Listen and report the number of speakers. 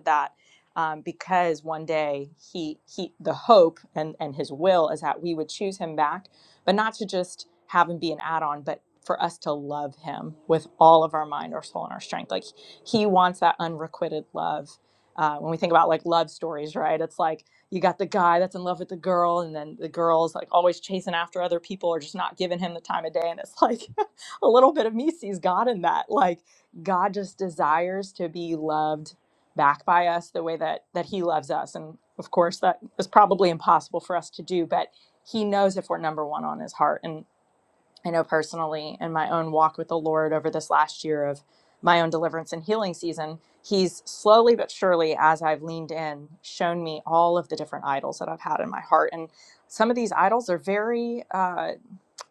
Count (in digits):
1